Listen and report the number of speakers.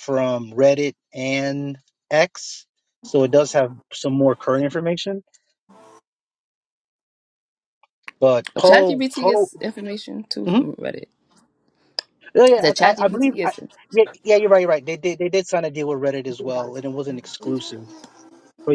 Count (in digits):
2